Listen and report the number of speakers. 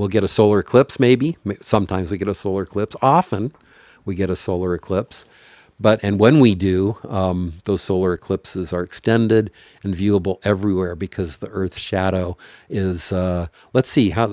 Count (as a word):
one